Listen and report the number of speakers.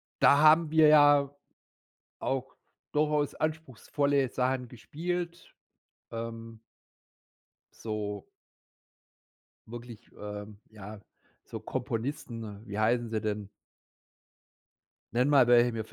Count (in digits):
1